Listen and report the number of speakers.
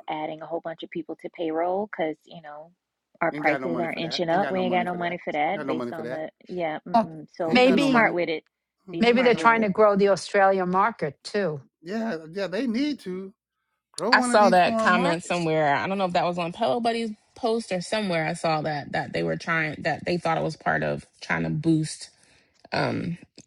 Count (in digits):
4